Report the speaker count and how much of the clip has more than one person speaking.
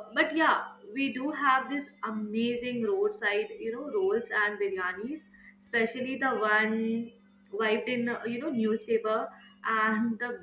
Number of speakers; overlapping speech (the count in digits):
1, no overlap